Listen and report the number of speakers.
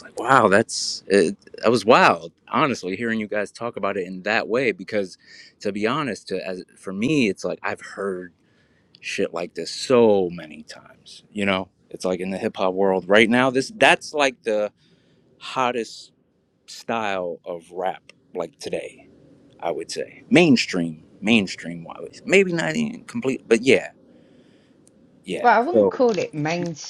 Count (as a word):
two